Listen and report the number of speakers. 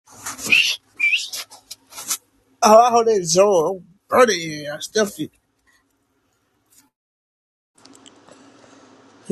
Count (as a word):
one